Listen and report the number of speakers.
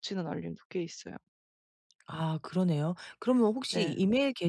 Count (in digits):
2